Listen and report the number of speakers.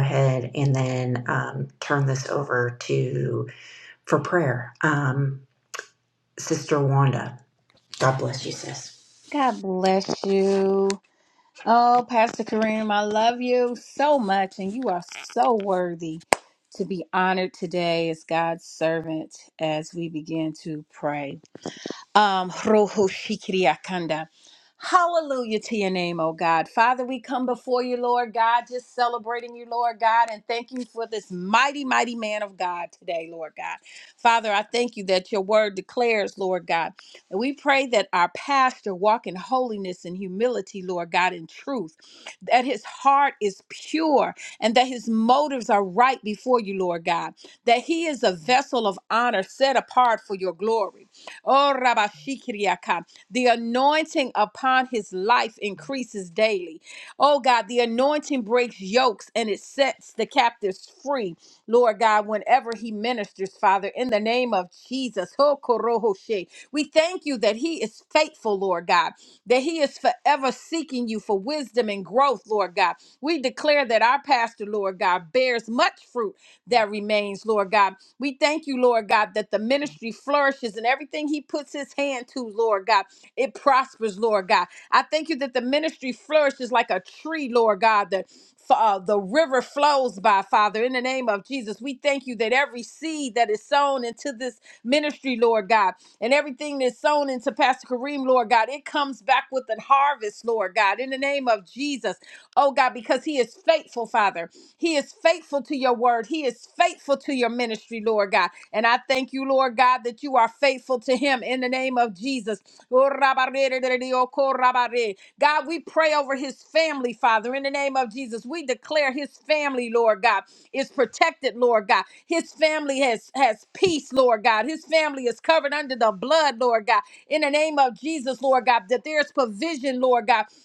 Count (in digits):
2